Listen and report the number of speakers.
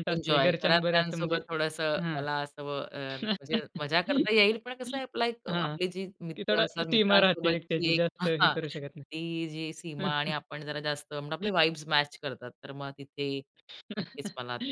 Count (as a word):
two